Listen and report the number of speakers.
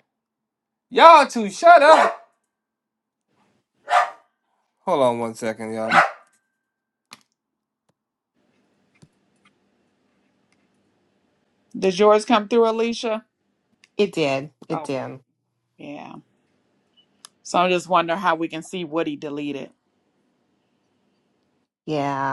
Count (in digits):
3